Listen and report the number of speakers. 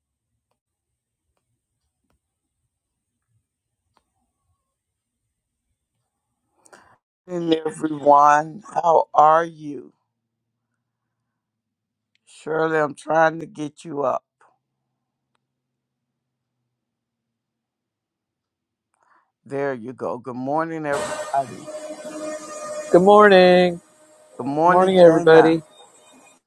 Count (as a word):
two